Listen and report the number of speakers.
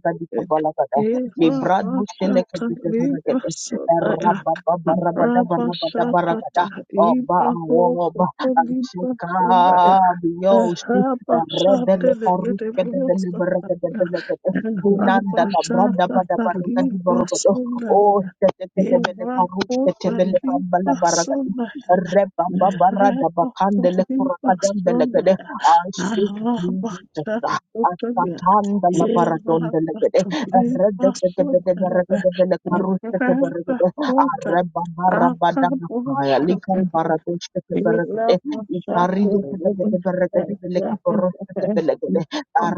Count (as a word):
two